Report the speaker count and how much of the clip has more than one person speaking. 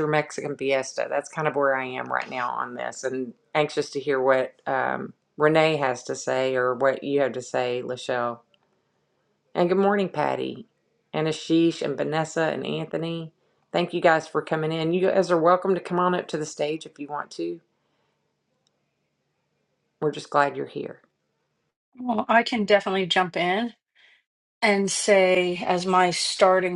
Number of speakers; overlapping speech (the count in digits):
2, no overlap